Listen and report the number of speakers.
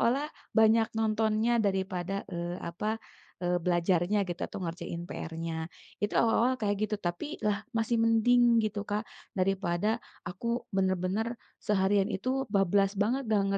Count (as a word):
one